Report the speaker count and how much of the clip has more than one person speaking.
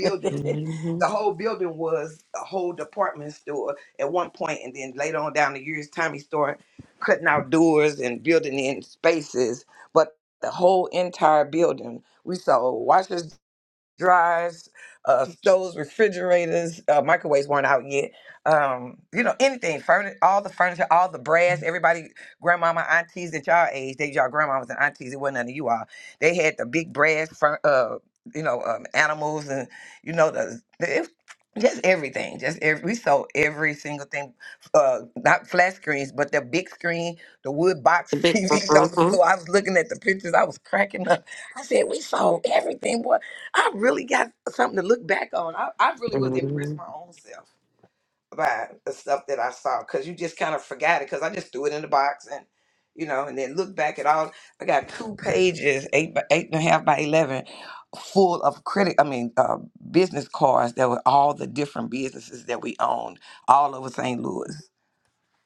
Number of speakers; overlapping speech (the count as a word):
two, about 3%